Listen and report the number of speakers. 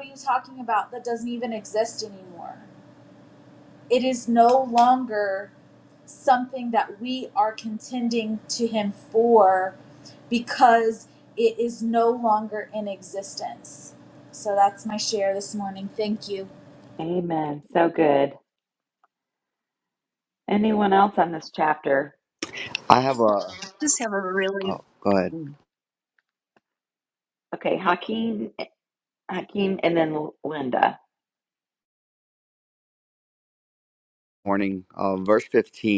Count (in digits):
4